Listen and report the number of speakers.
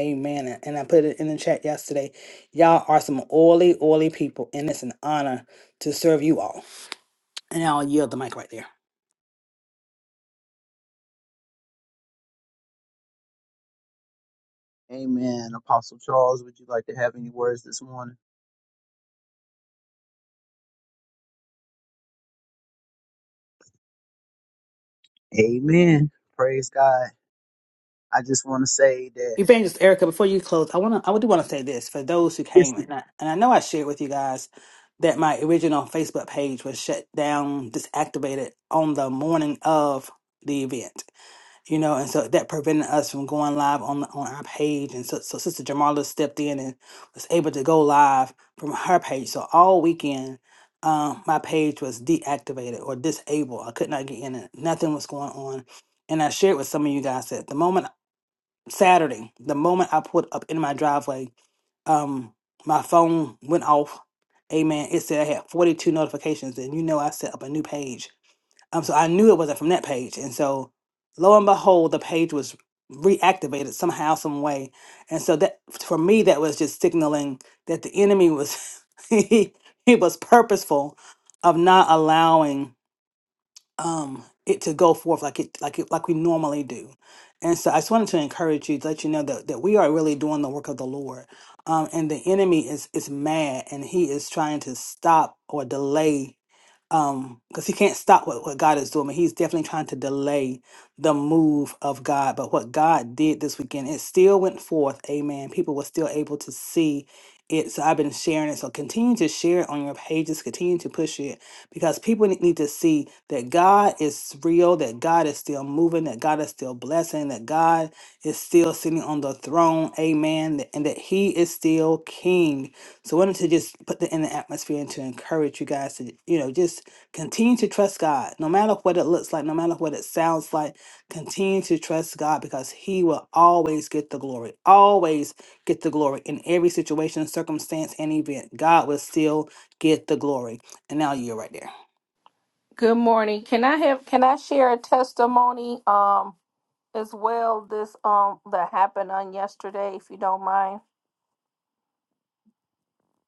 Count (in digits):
3